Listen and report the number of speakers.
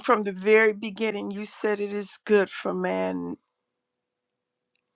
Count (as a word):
one